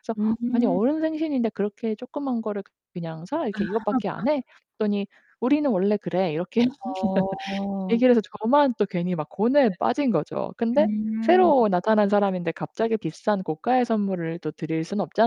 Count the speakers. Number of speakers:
2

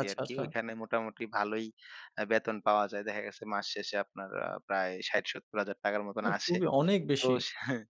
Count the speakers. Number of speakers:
2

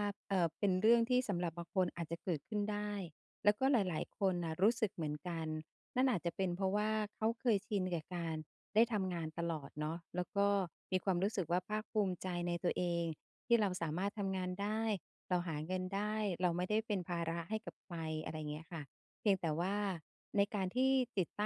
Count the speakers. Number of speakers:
1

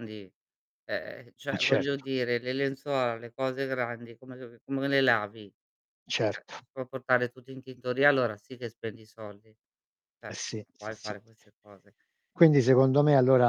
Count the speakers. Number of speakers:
2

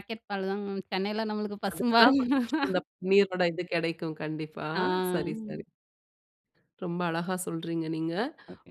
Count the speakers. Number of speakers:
2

